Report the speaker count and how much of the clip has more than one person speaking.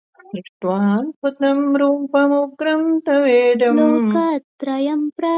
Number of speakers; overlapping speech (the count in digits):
2, about 3%